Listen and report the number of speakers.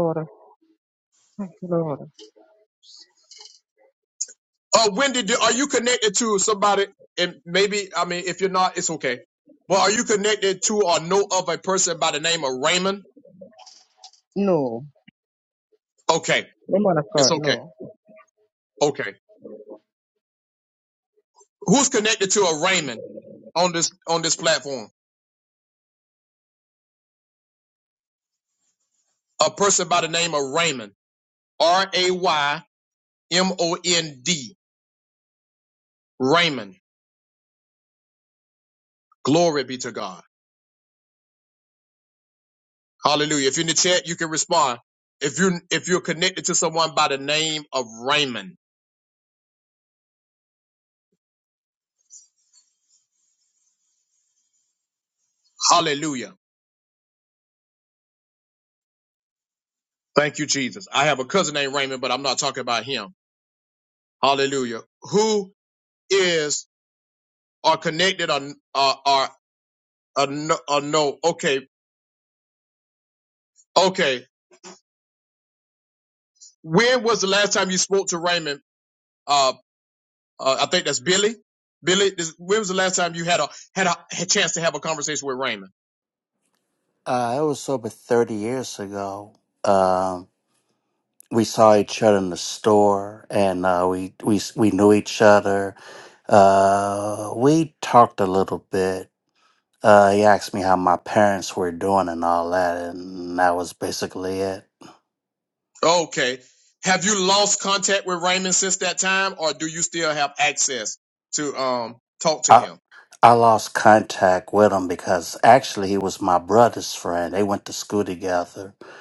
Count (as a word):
three